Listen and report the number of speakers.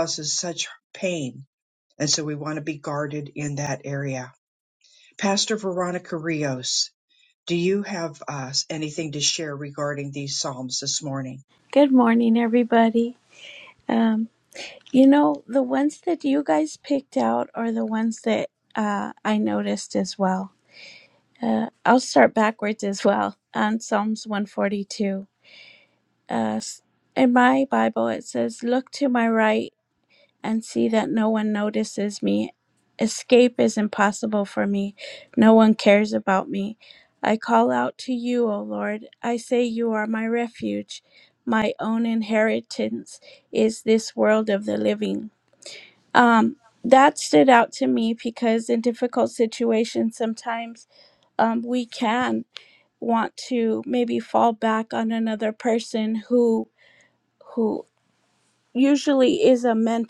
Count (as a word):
two